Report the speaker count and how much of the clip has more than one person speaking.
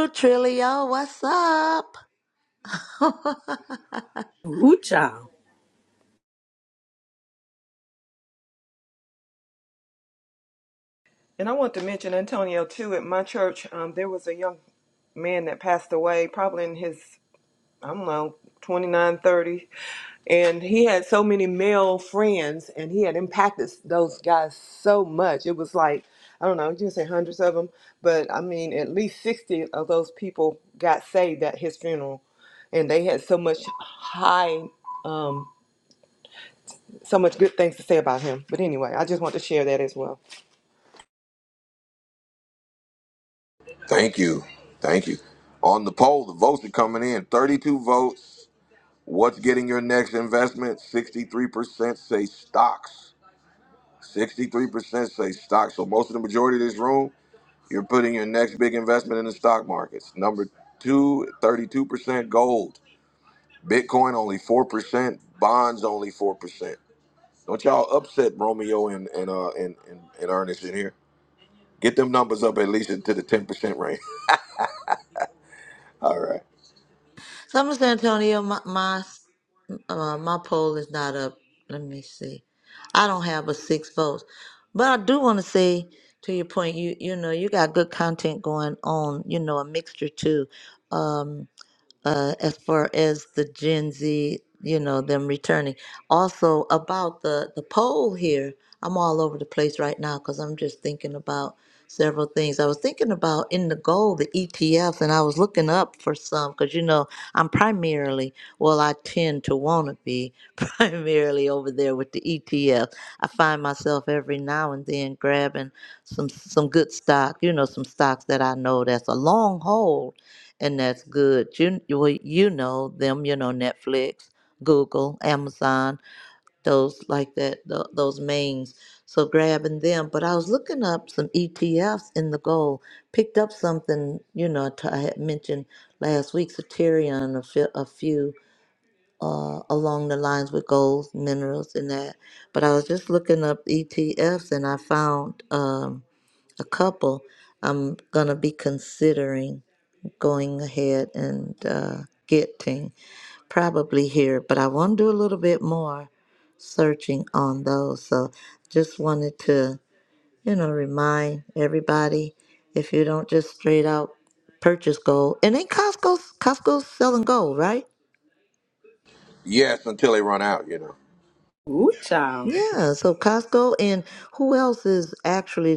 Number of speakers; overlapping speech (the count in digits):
4, under 1%